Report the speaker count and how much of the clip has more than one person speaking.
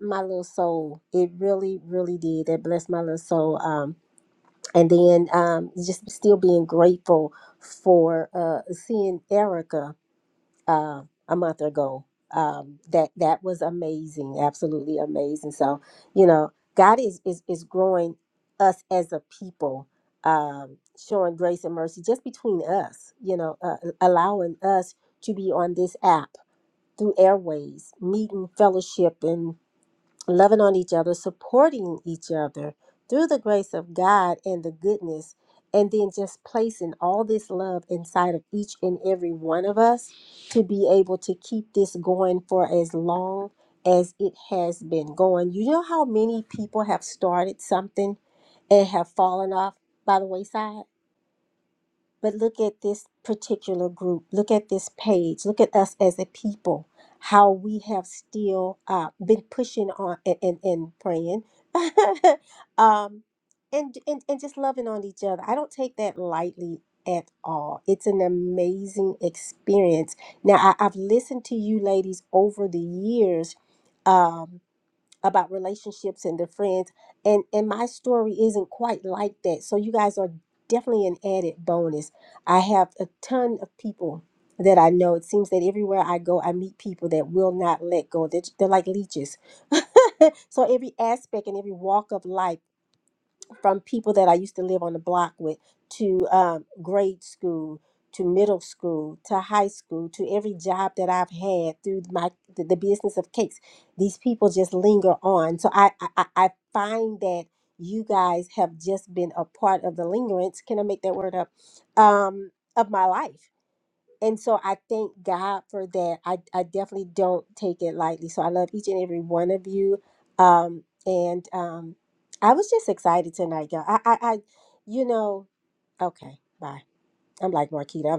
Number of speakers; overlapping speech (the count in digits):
1, no overlap